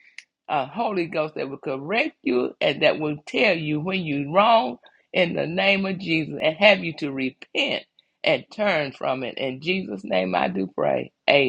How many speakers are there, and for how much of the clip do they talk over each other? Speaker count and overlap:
1, no overlap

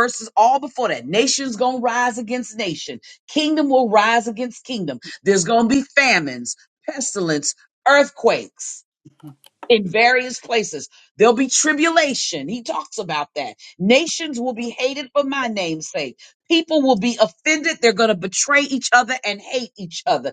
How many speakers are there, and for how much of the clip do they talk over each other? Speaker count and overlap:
1, no overlap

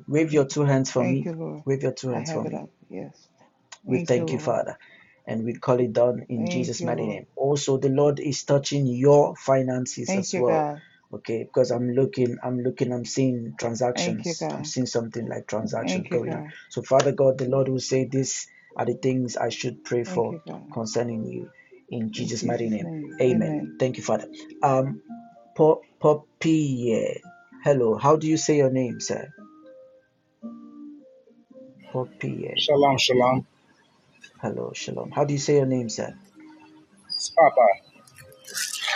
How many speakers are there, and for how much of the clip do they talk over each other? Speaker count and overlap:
3, about 16%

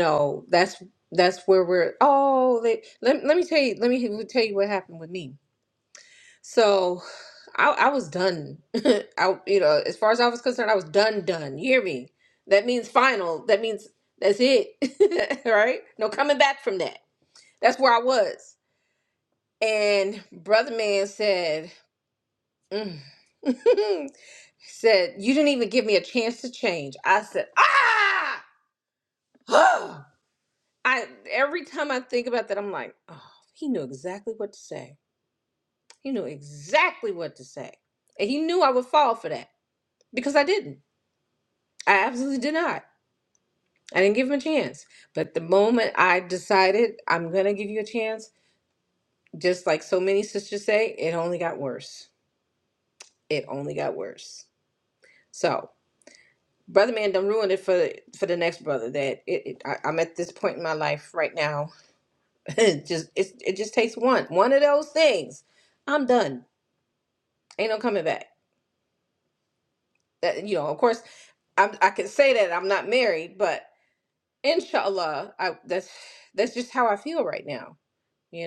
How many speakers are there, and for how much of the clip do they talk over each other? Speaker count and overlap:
1, no overlap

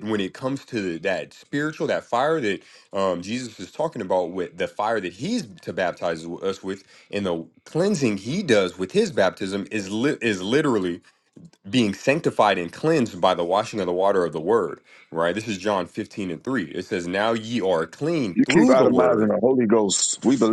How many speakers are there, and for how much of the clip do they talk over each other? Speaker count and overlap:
2, about 4%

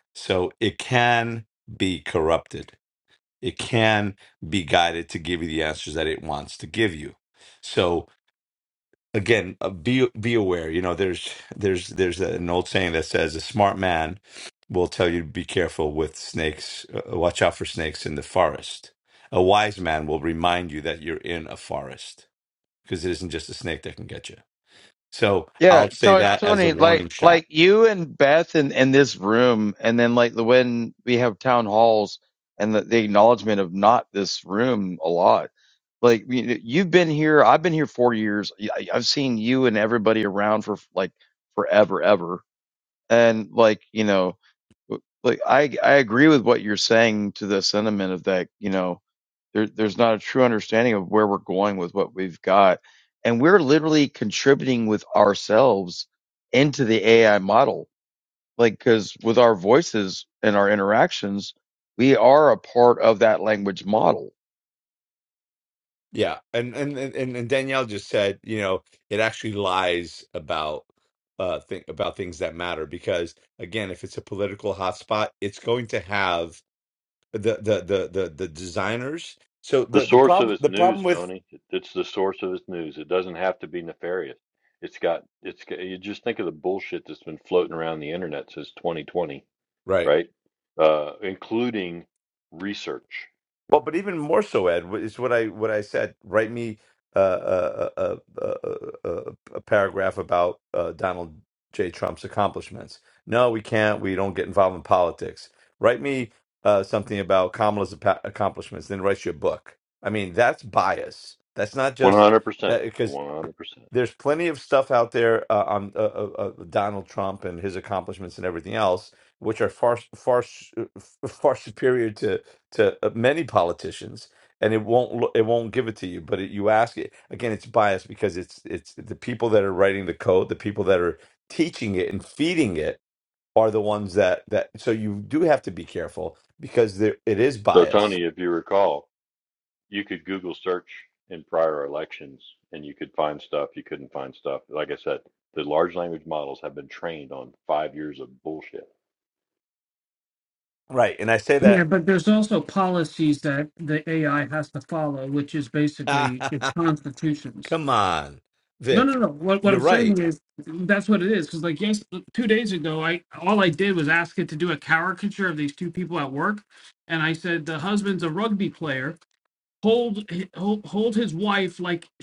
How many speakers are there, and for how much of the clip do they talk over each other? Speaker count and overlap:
4, about 3%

